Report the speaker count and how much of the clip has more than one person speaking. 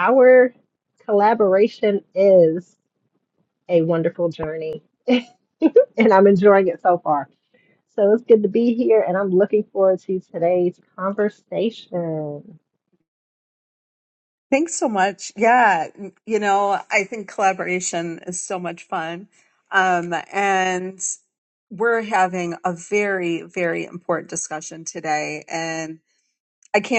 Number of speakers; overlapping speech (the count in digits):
2, no overlap